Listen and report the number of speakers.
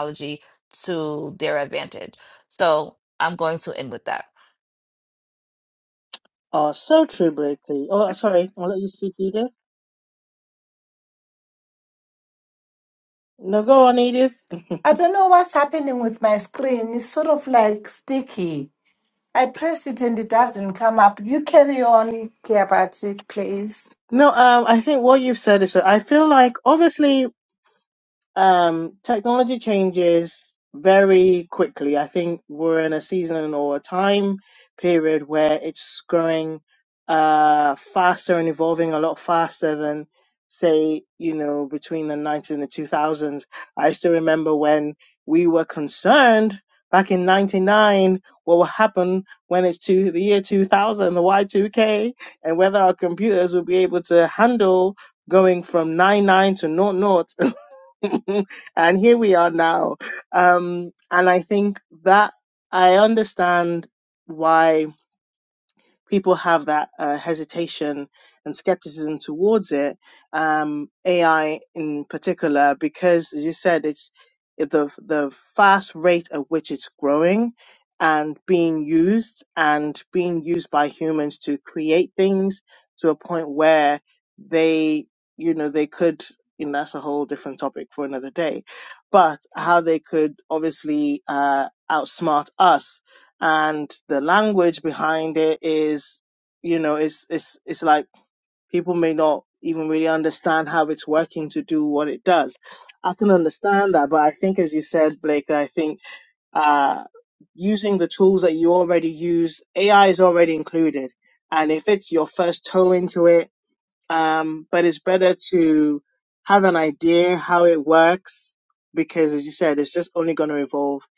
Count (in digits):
3